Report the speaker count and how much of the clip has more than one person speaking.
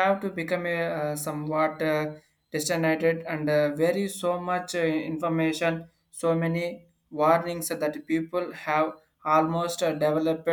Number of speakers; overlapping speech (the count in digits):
1, no overlap